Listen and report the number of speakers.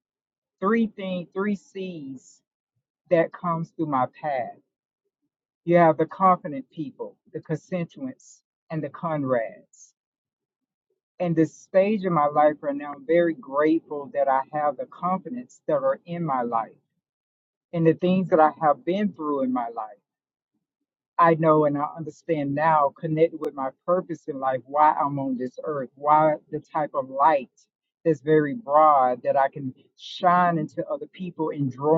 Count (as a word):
one